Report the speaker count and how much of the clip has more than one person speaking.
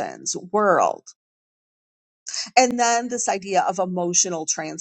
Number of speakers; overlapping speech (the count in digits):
1, no overlap